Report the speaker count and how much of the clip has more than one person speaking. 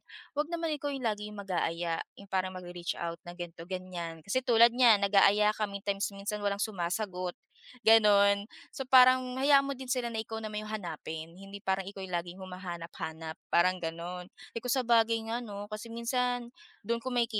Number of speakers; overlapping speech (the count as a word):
one, no overlap